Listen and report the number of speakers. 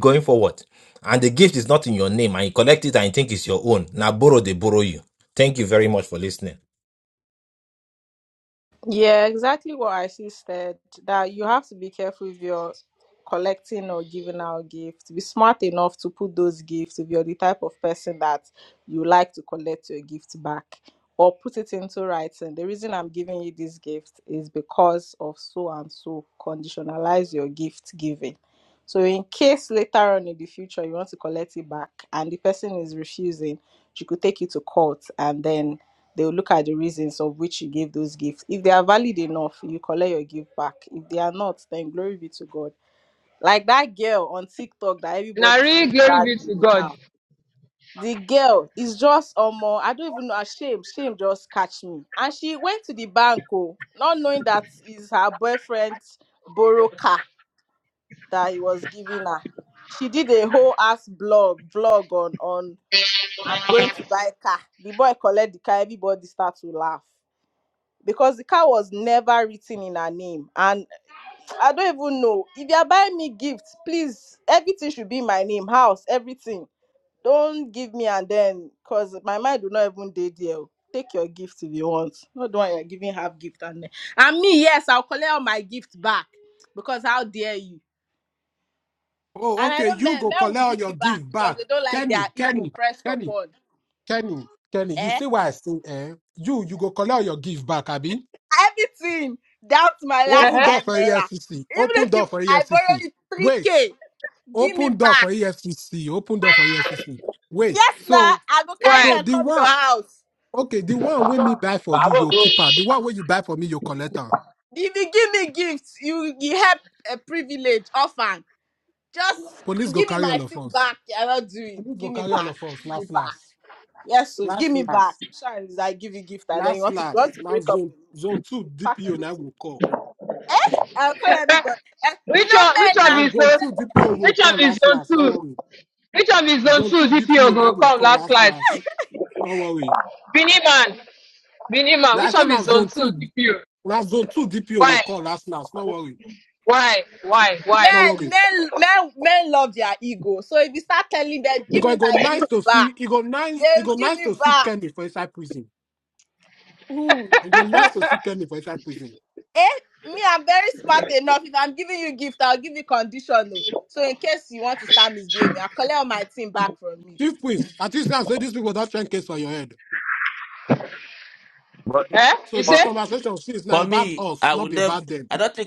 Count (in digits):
5